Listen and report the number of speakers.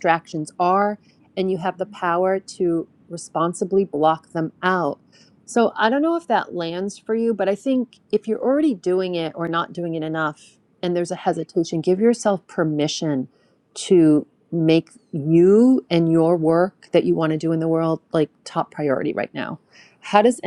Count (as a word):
one